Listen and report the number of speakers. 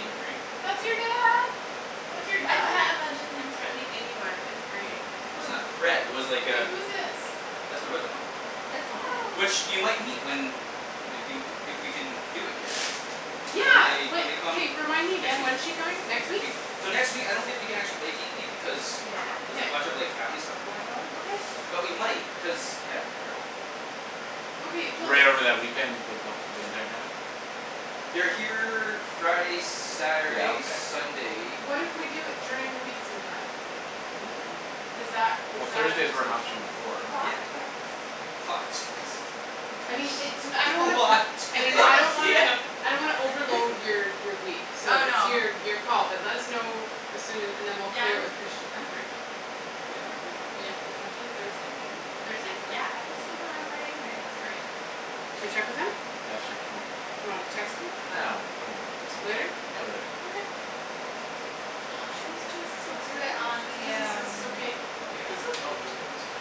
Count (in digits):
4